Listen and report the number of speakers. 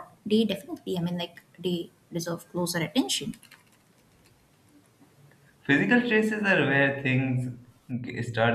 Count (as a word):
two